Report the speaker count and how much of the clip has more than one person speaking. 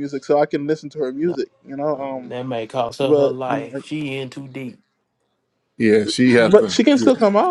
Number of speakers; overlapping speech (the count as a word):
three, about 28%